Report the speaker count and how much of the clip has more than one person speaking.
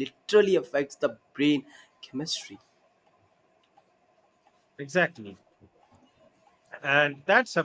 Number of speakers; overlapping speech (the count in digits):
2, no overlap